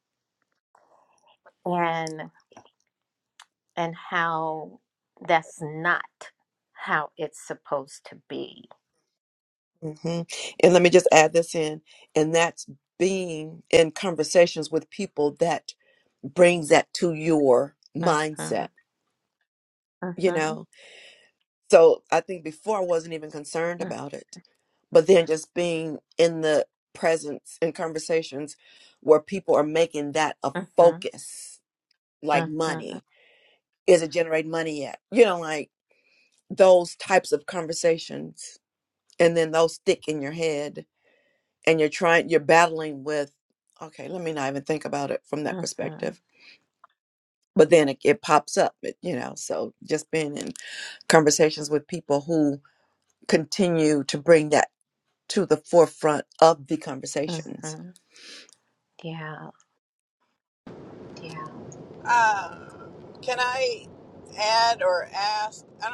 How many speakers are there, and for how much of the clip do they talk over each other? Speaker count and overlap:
3, about 5%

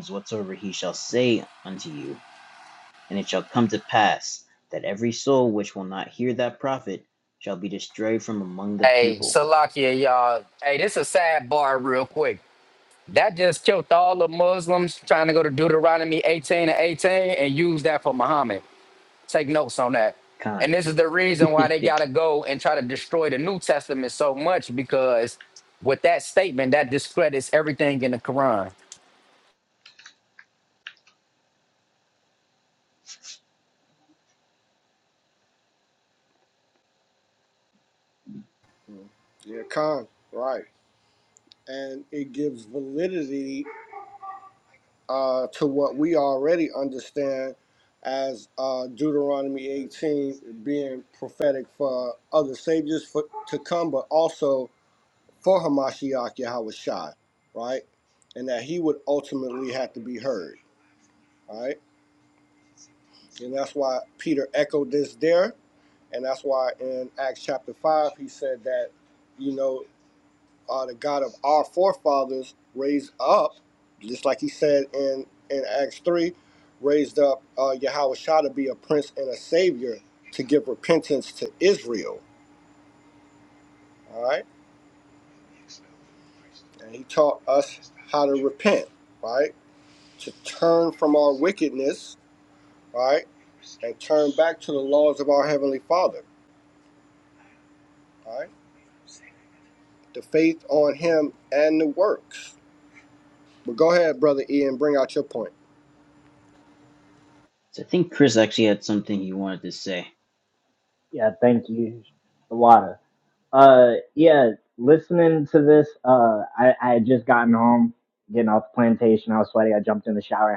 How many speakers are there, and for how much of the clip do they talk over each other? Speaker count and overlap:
4, about 1%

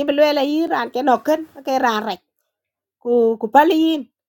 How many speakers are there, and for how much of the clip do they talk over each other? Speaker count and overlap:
1, no overlap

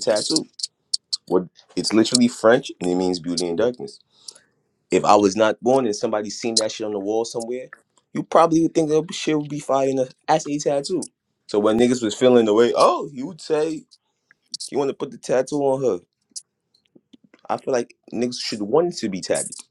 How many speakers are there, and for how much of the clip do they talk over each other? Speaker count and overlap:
1, no overlap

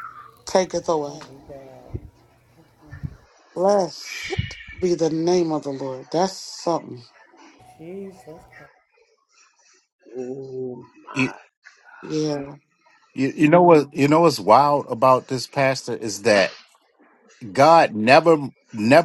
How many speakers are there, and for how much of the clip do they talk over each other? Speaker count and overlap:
4, about 2%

